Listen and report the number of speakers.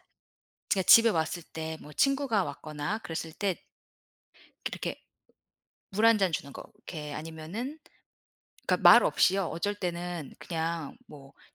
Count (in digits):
1